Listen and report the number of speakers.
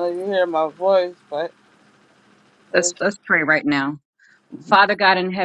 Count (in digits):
2